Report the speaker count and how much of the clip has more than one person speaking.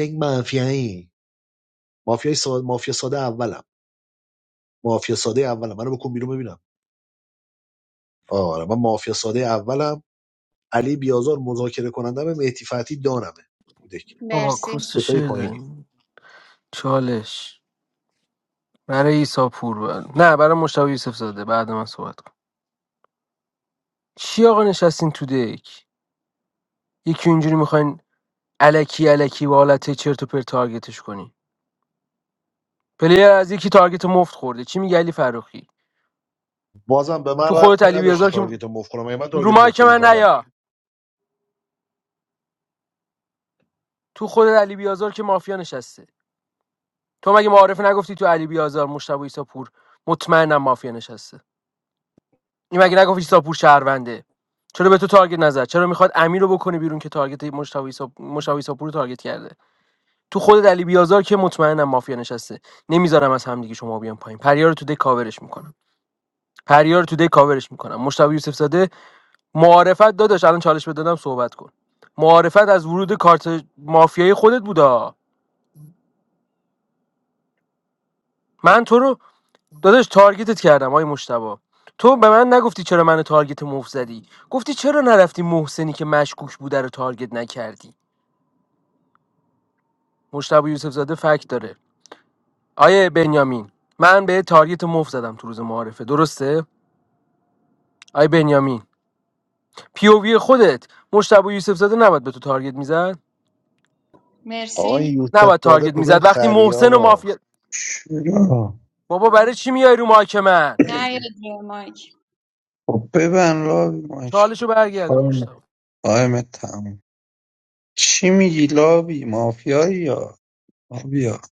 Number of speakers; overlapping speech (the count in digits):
4, about 5%